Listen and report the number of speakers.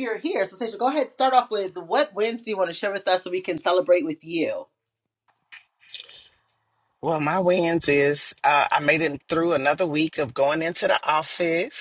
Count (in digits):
2